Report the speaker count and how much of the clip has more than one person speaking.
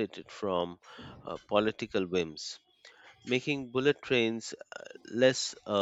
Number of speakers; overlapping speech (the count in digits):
1, no overlap